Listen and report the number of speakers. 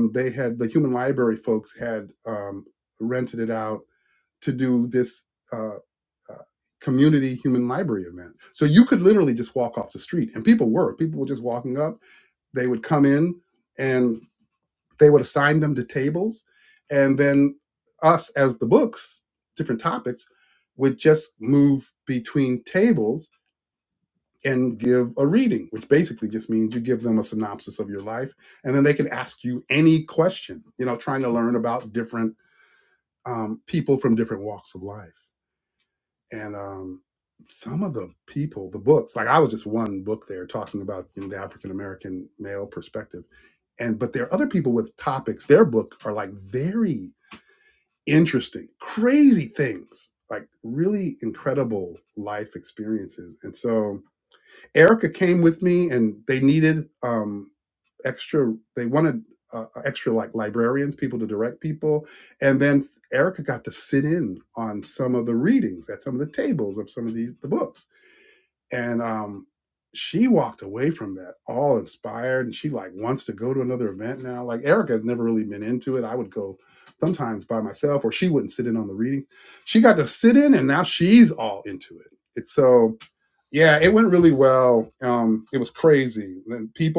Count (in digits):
1